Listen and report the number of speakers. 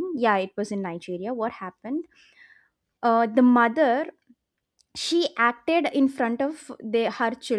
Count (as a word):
one